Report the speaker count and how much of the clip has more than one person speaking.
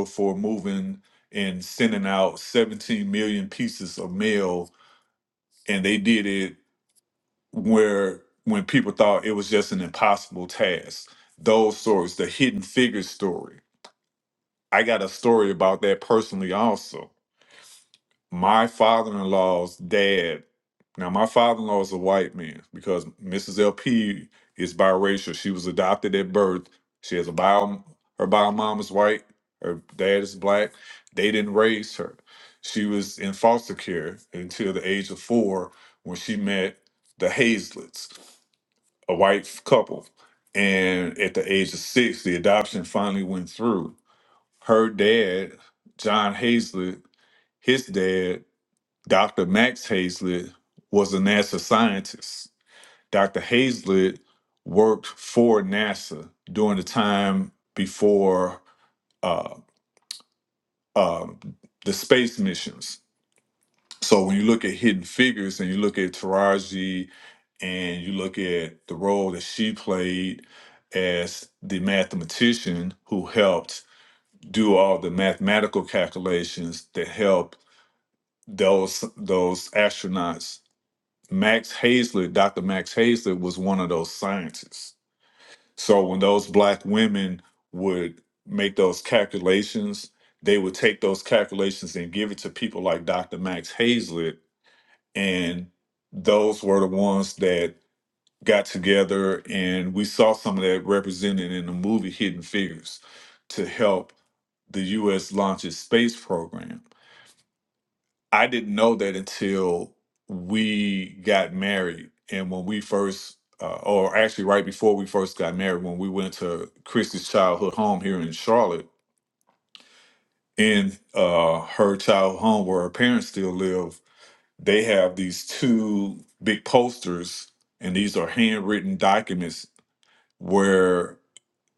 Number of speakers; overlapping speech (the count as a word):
one, no overlap